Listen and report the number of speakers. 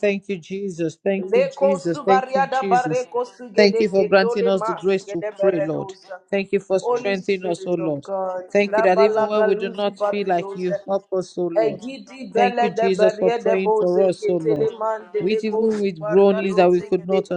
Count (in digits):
2